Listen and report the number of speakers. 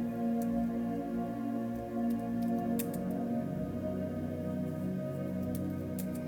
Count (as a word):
zero